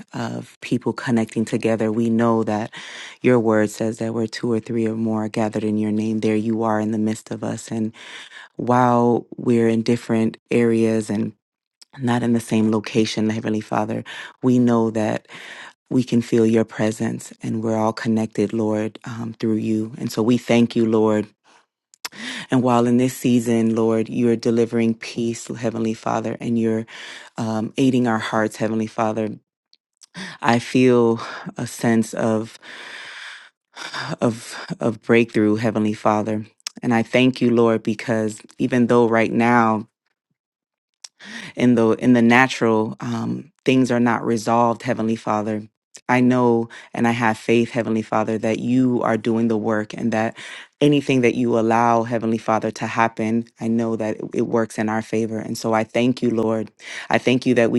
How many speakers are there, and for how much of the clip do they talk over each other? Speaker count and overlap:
1, no overlap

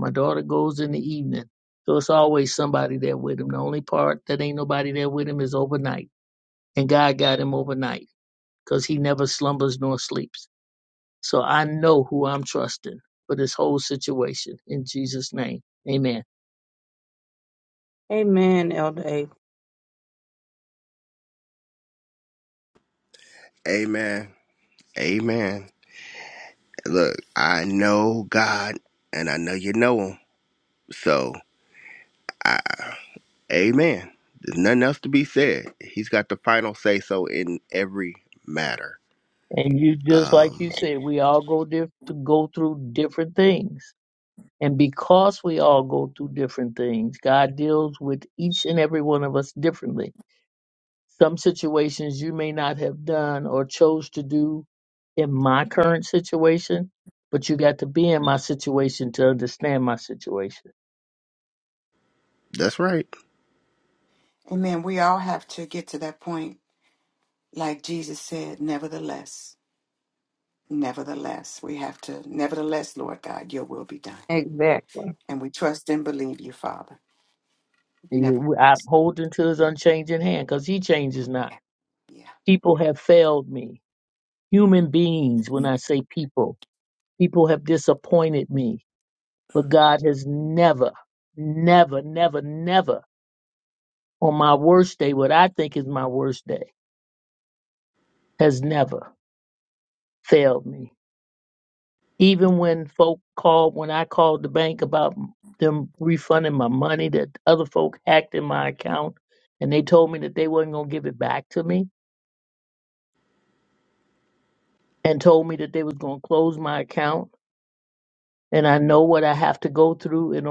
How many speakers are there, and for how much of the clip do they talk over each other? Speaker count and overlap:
4, about 1%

